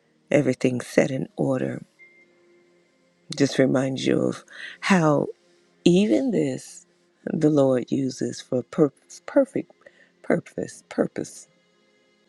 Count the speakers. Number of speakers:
one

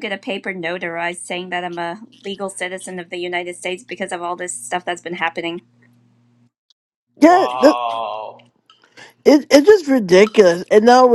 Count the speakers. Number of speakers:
three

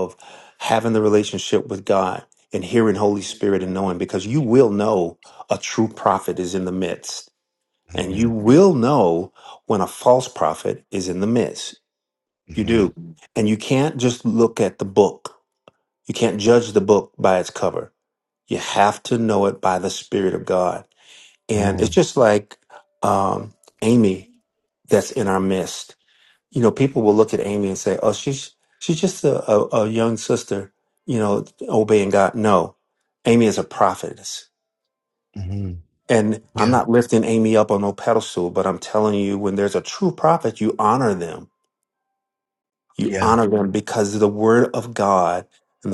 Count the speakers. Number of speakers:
two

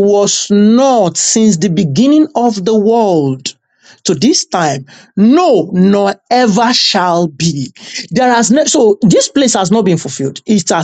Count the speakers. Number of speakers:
one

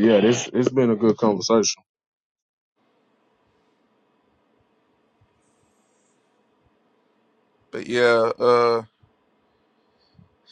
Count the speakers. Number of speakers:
two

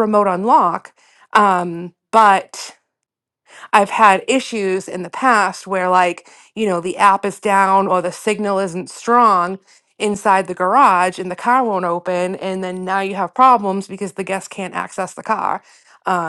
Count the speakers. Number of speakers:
one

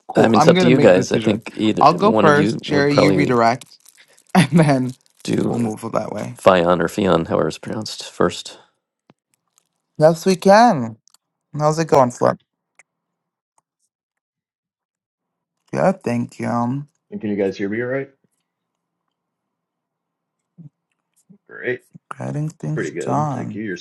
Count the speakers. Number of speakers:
three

